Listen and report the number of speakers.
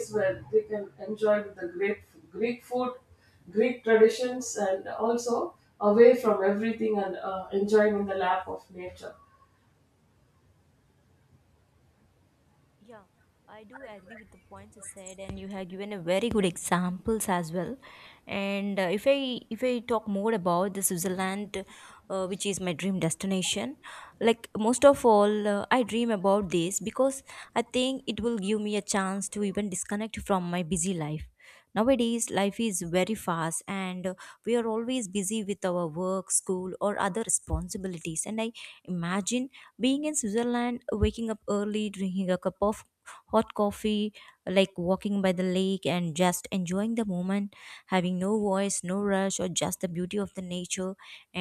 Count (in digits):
2